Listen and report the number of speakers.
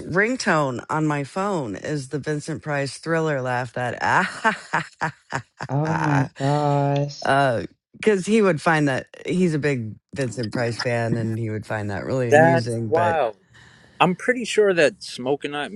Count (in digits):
3